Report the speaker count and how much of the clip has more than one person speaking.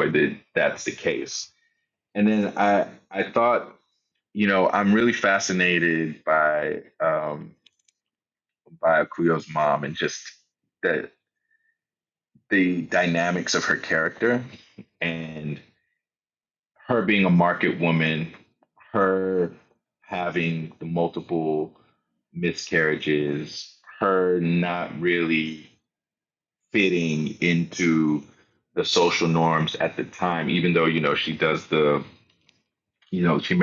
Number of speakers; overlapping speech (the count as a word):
one, no overlap